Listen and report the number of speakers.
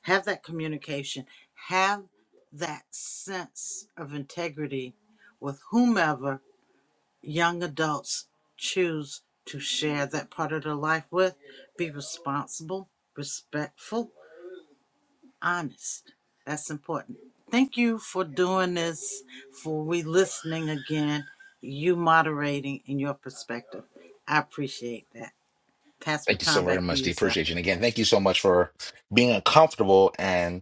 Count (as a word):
two